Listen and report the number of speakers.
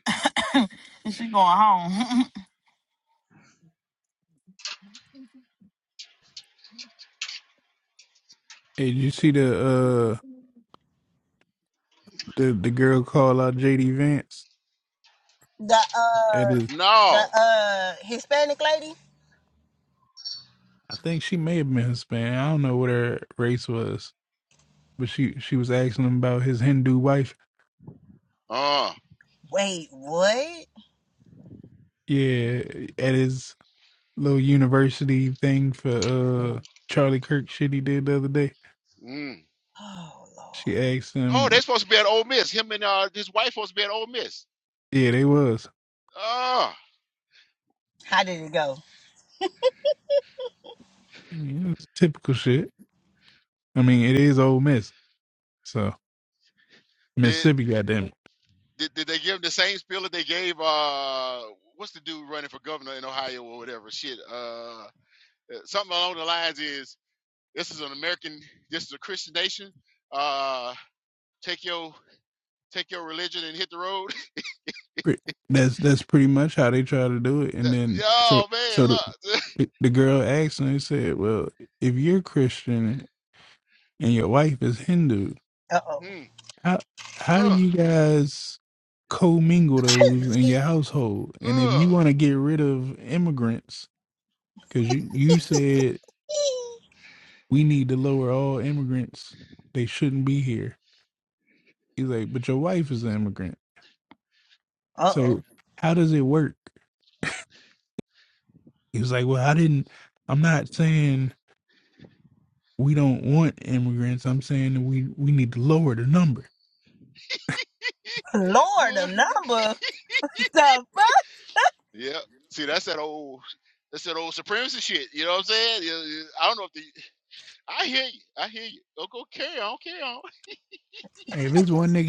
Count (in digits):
4